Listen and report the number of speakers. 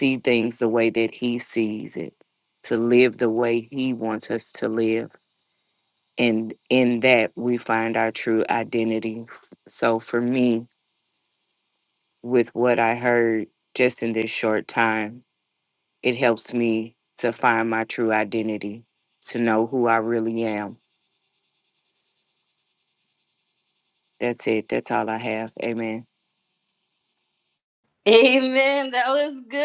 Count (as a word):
two